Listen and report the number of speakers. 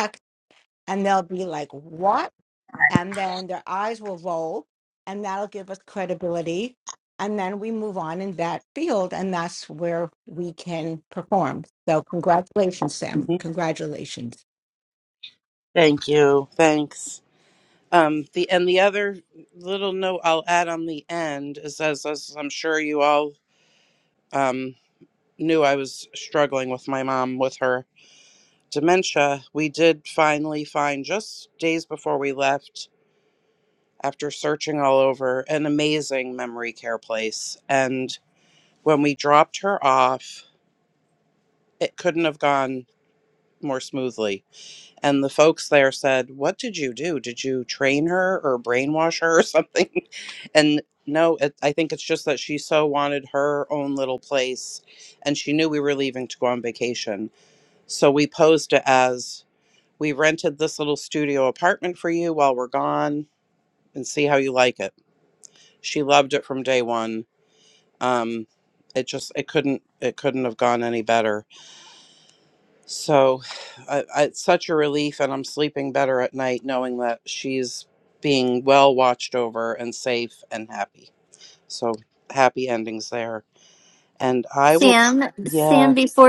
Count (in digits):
3